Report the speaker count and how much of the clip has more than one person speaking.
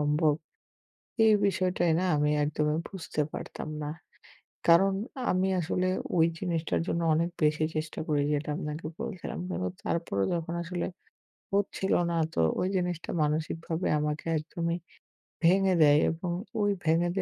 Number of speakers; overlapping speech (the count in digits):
1, no overlap